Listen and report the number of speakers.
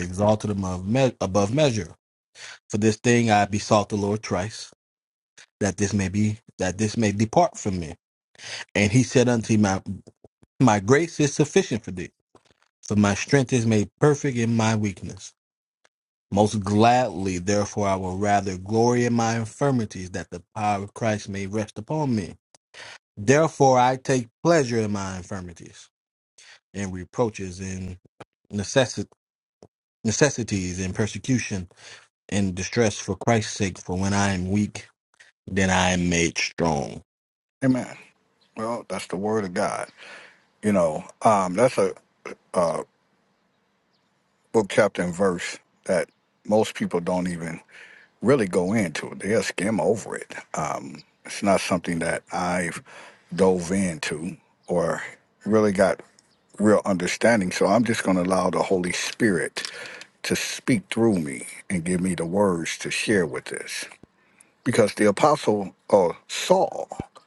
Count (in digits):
2